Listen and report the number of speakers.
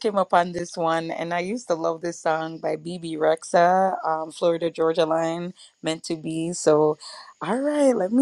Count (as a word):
one